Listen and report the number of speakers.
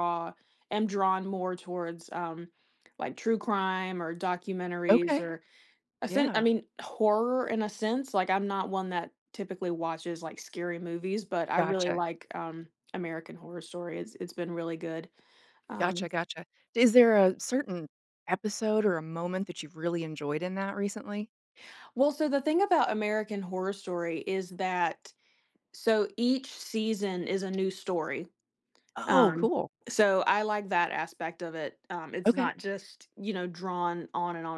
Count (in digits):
2